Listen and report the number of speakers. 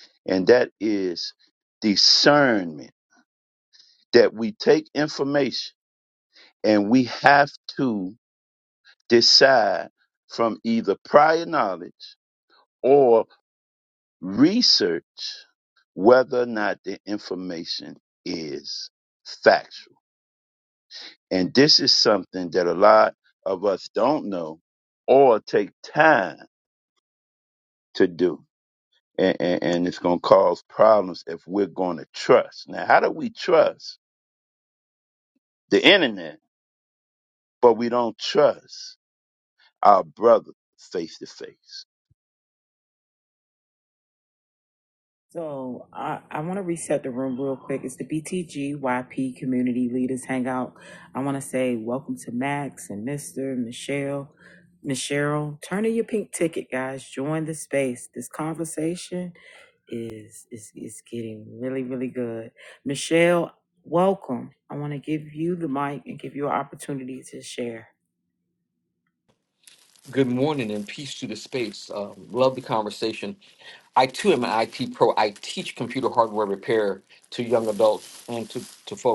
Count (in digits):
3